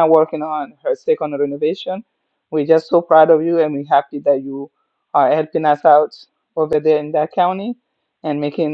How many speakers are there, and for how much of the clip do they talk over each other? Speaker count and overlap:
1, no overlap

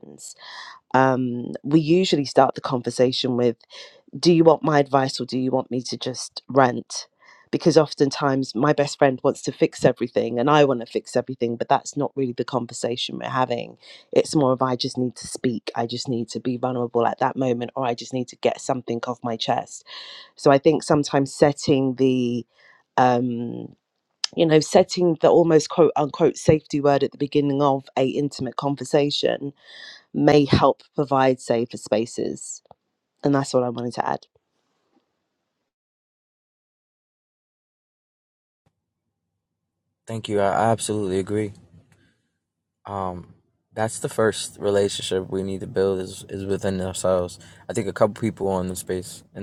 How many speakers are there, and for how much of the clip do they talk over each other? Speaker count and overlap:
2, no overlap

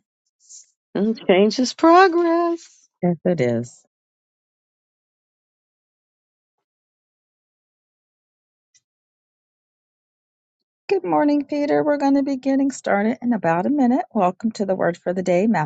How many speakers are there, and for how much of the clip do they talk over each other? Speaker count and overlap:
2, no overlap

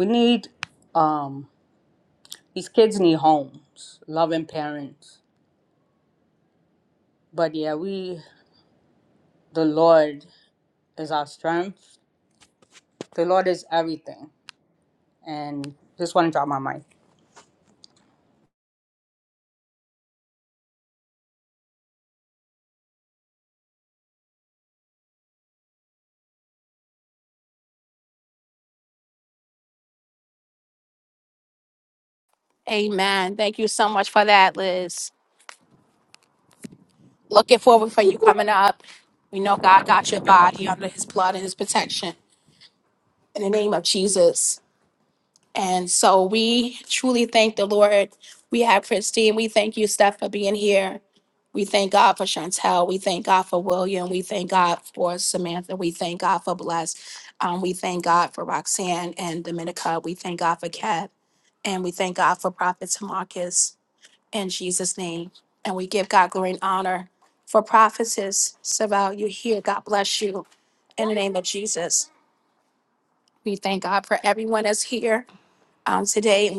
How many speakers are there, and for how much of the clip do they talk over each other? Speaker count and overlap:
2, no overlap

